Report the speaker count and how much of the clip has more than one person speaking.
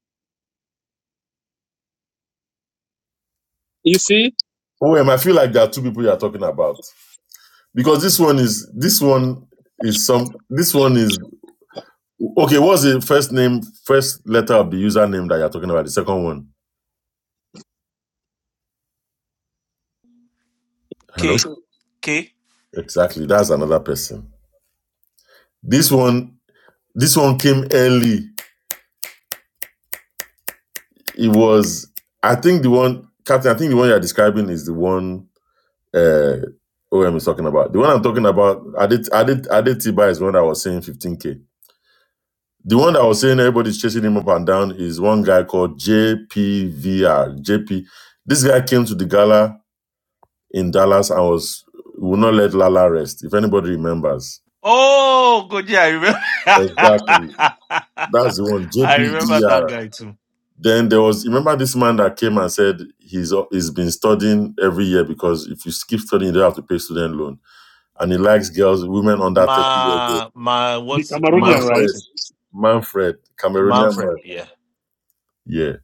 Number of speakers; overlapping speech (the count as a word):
three, about 5%